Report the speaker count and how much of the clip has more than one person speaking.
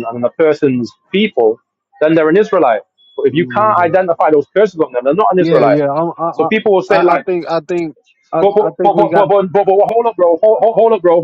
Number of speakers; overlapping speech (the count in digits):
2, about 21%